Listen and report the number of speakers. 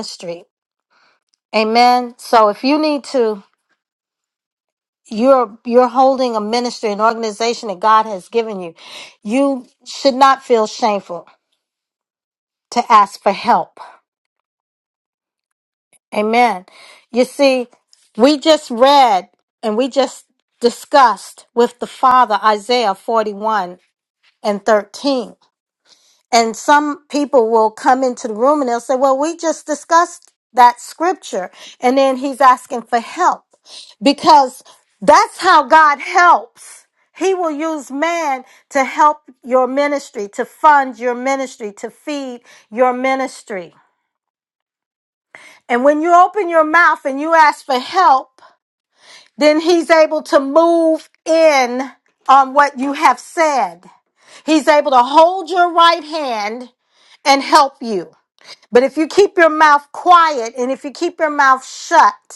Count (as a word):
one